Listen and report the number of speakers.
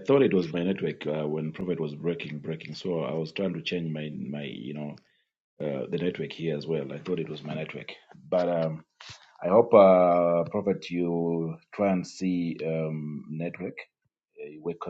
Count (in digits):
1